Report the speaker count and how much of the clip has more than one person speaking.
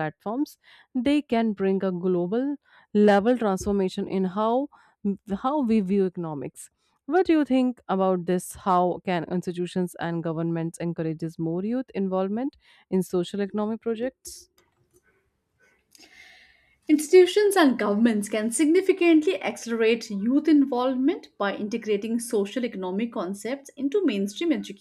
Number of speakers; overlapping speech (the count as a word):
two, no overlap